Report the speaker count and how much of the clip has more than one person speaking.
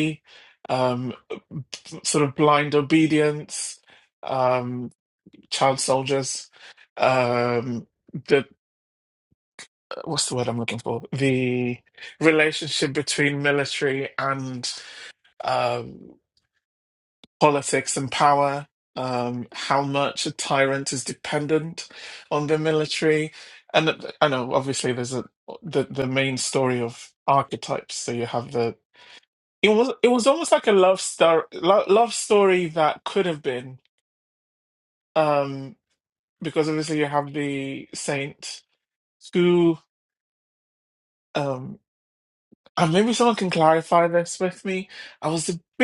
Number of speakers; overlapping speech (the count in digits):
1, no overlap